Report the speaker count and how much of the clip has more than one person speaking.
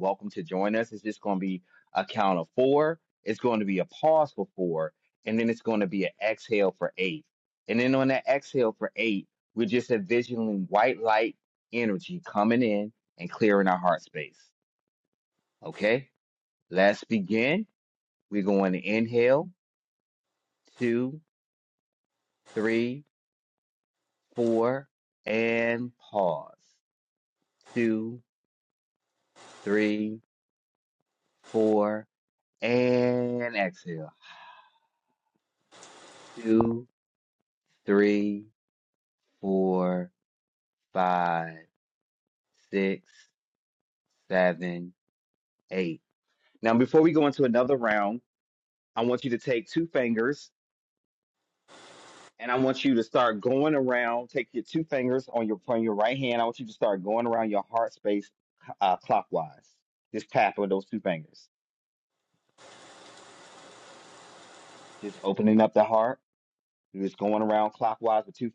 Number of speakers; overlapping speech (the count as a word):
one, no overlap